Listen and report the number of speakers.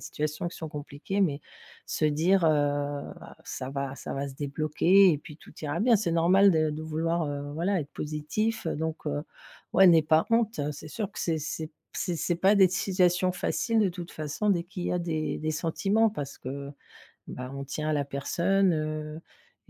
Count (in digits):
1